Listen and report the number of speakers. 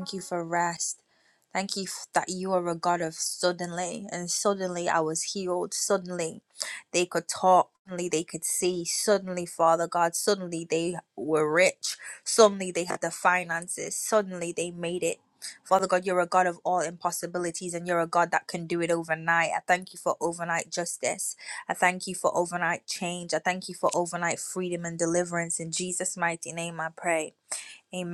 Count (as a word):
one